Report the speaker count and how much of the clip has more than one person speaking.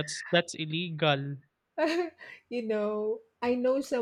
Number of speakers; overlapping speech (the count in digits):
2, no overlap